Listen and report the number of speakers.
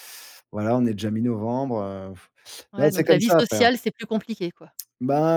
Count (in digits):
2